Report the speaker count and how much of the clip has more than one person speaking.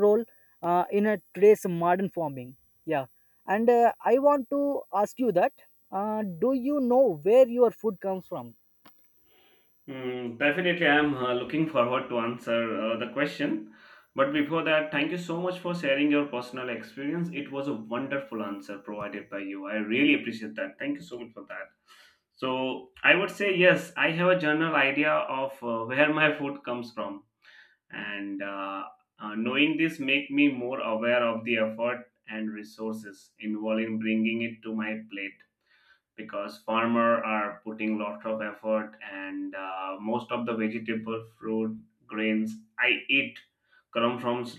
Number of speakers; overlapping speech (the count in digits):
2, no overlap